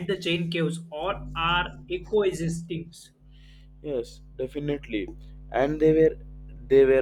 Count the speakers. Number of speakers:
two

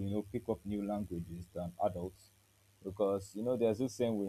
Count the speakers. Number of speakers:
one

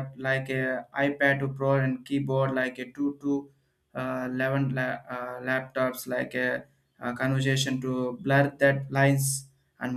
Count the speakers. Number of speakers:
one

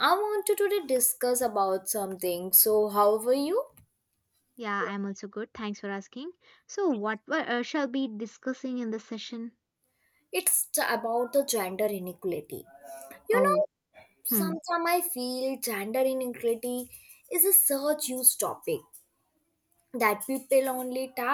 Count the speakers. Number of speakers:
two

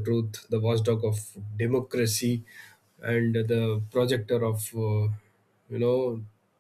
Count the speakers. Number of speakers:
one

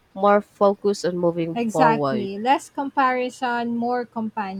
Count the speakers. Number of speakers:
two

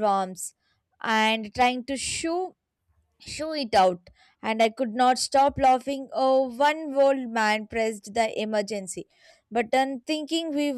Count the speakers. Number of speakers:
one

